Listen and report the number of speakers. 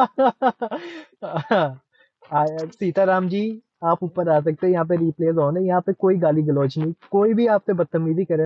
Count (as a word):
one